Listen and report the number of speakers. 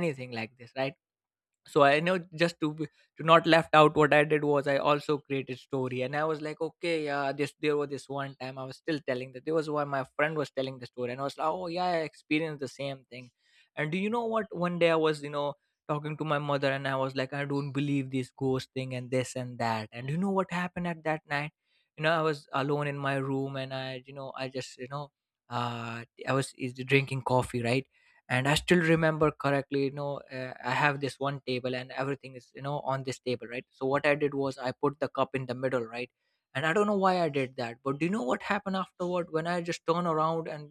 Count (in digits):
1